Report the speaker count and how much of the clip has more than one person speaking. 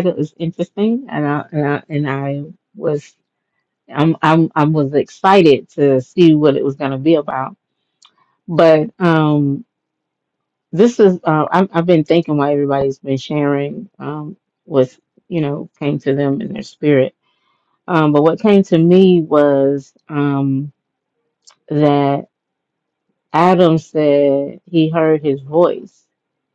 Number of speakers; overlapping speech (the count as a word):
one, no overlap